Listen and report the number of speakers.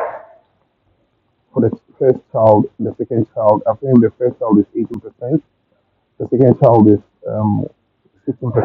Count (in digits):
1